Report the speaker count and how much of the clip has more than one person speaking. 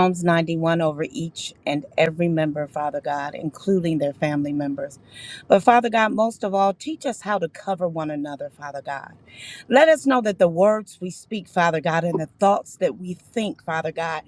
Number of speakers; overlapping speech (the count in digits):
1, no overlap